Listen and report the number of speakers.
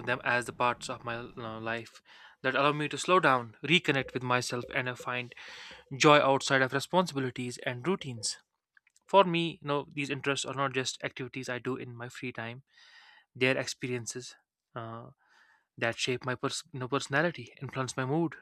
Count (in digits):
1